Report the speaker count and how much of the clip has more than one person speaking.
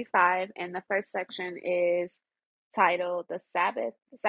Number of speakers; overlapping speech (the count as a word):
one, no overlap